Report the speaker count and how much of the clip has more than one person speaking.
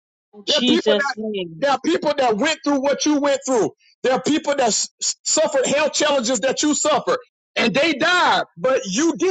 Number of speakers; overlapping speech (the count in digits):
2, about 7%